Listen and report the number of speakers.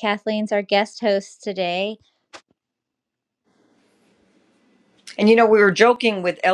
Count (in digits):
2